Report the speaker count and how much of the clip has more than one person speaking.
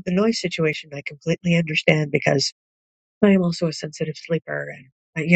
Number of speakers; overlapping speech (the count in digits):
1, no overlap